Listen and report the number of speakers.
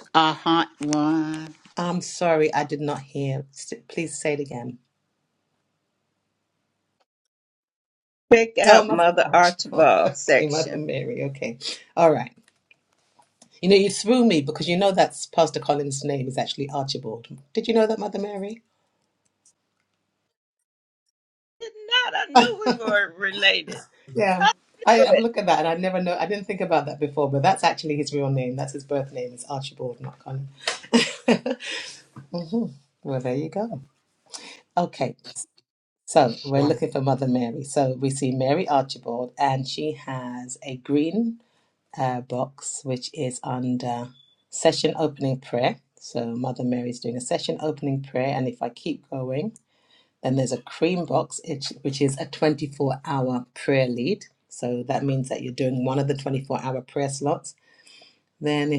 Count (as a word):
three